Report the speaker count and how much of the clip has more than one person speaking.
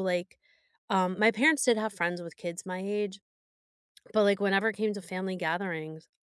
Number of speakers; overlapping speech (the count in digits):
1, no overlap